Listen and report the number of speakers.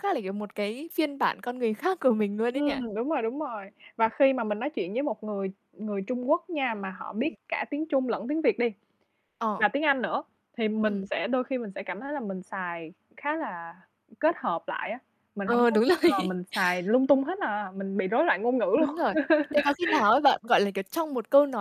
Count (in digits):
2